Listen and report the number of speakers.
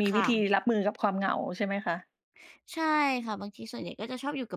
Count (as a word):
two